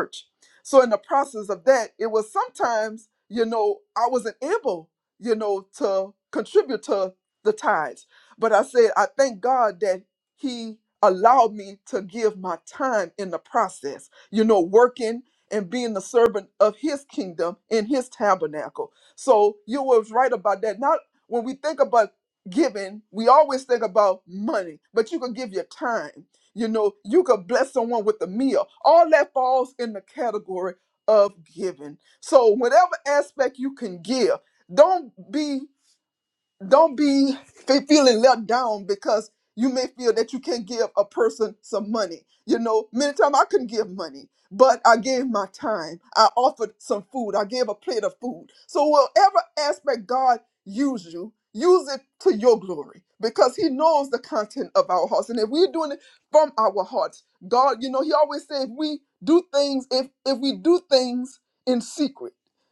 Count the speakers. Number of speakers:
1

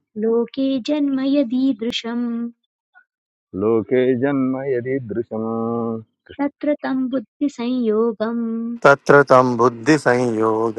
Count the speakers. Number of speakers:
3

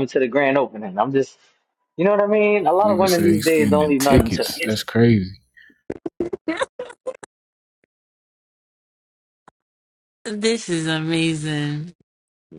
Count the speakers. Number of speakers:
3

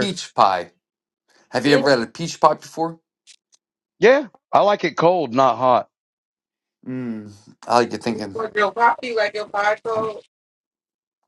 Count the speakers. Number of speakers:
3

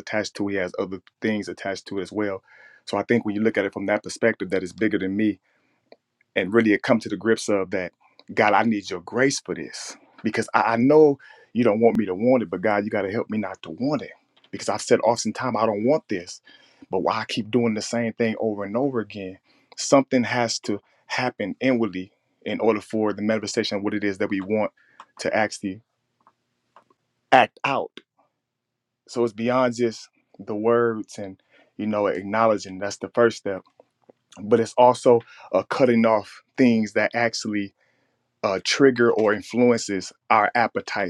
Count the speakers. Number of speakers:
1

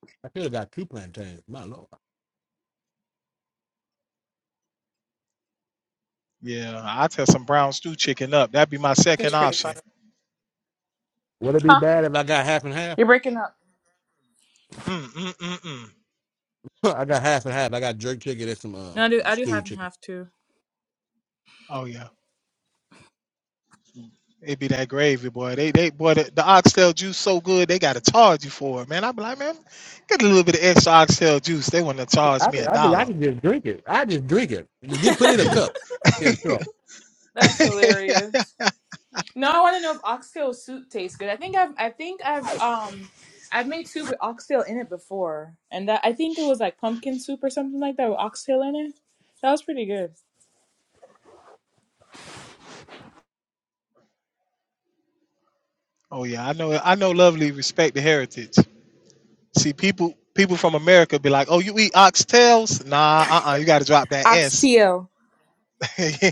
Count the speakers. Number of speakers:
3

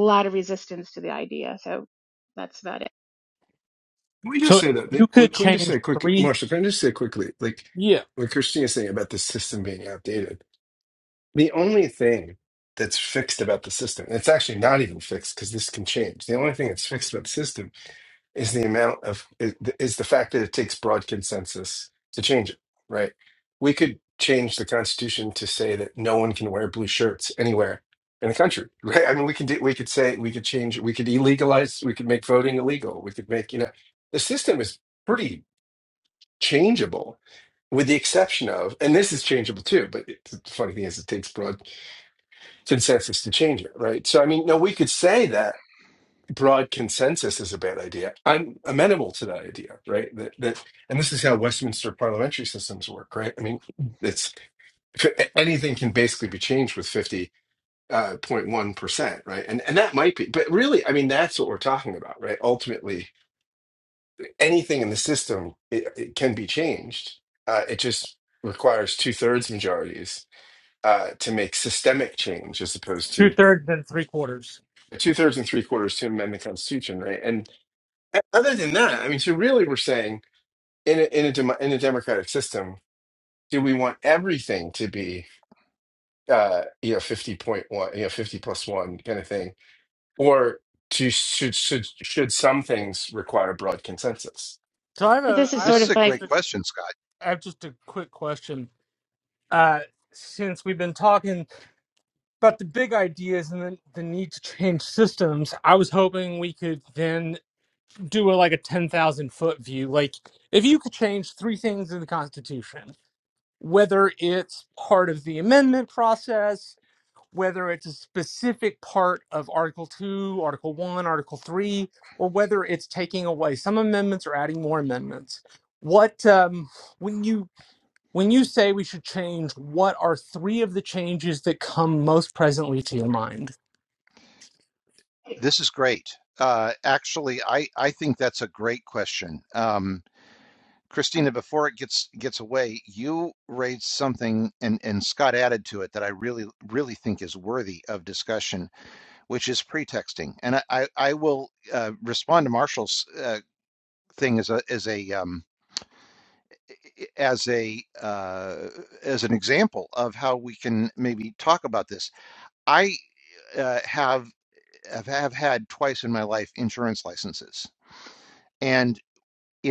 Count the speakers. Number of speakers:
4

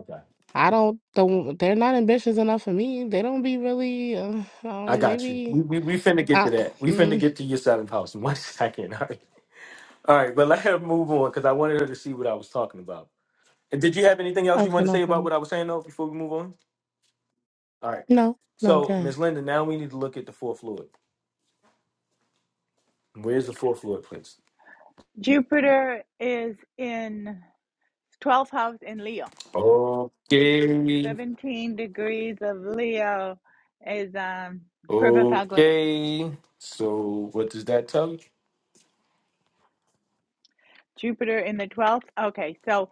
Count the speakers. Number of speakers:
3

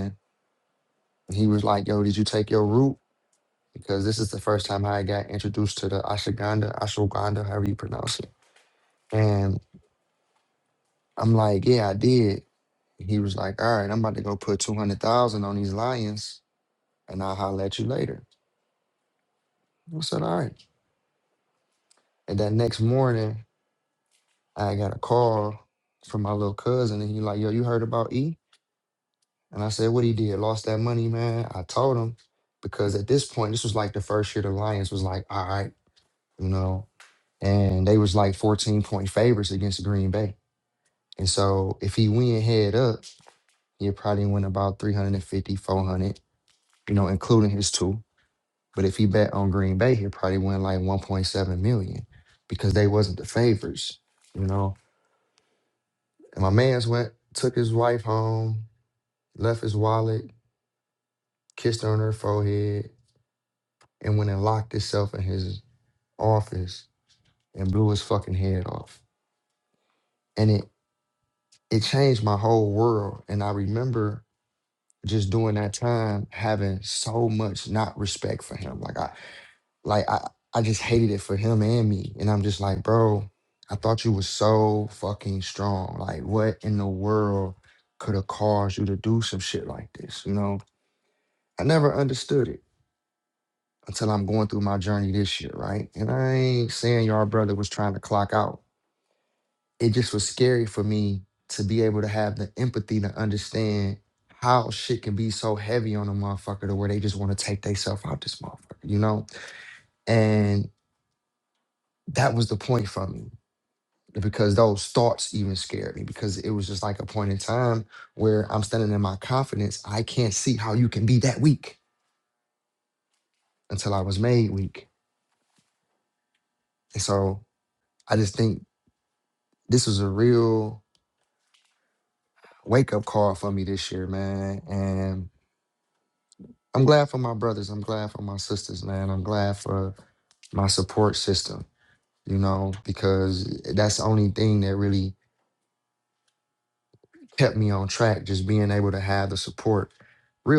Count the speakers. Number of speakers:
1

